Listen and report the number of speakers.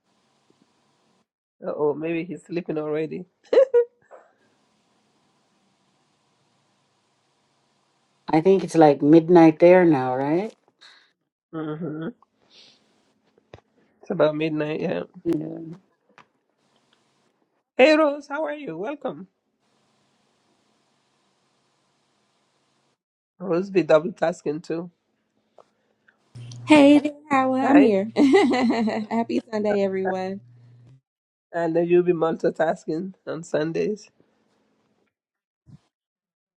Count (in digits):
3